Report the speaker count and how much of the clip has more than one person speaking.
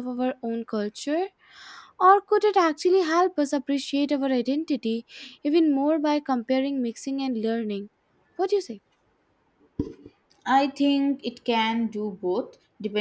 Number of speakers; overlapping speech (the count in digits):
2, no overlap